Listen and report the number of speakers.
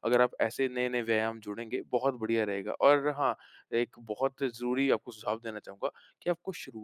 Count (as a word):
one